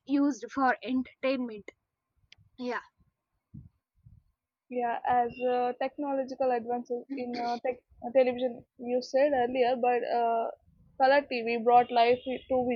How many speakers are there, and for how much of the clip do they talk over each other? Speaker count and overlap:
two, no overlap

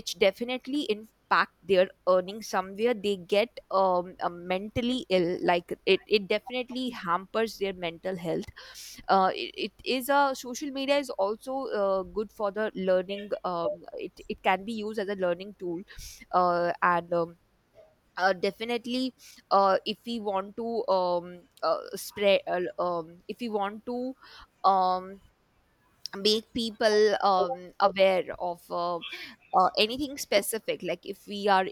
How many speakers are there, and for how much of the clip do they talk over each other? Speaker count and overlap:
one, no overlap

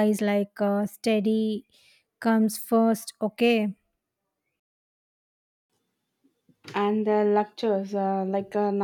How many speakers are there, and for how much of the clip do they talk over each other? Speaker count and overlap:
two, no overlap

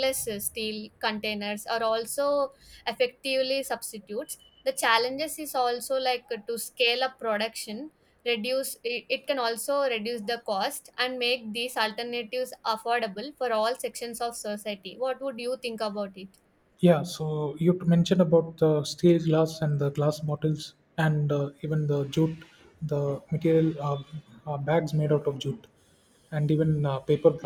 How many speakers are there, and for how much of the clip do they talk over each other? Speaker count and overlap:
two, no overlap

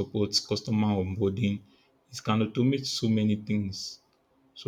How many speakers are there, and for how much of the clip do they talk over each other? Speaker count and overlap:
one, no overlap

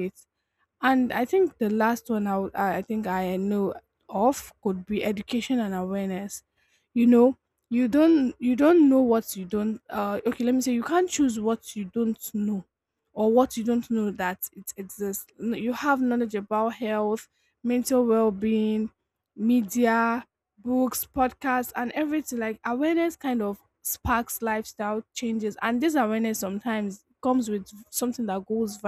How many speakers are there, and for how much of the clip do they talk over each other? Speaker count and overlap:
one, no overlap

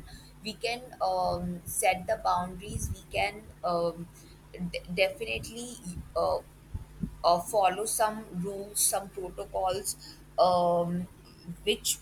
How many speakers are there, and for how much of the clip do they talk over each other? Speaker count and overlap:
one, no overlap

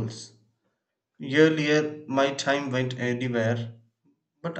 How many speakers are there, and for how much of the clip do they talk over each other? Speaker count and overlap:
one, no overlap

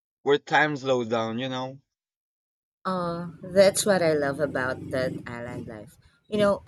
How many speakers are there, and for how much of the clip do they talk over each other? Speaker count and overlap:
two, no overlap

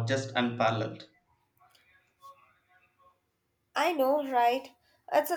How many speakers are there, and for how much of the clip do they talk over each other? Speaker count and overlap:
two, no overlap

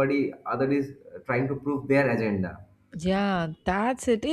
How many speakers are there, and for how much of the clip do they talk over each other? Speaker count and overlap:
two, no overlap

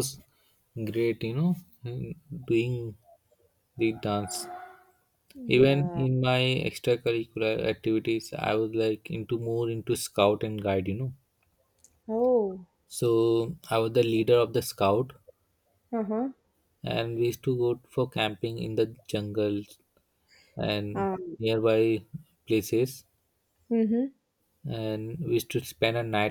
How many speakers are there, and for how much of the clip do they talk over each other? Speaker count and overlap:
two, about 3%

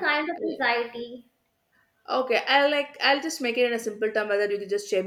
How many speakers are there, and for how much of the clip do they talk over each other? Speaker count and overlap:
two, about 13%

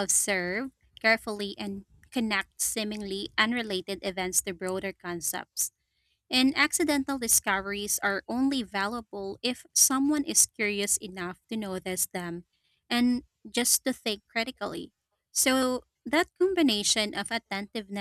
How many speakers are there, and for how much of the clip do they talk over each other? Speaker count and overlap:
one, no overlap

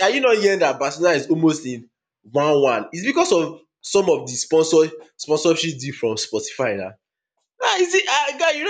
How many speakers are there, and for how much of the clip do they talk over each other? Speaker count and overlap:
one, no overlap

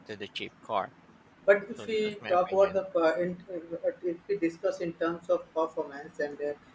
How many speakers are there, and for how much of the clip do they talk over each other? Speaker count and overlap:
two, about 15%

